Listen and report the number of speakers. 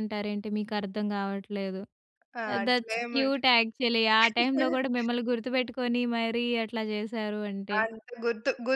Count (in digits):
2